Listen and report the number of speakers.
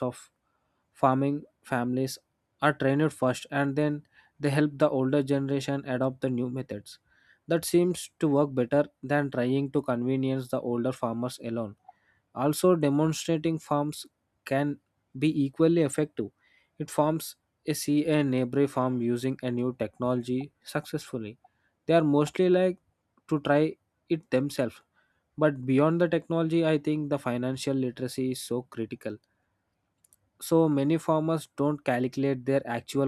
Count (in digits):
1